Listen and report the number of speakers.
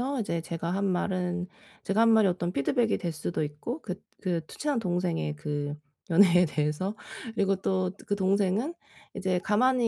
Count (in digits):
1